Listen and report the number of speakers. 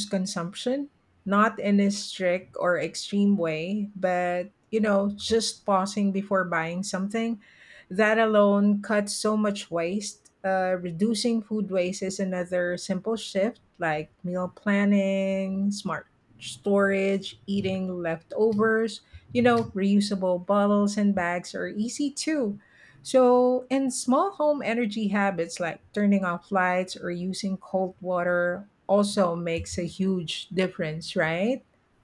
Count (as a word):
one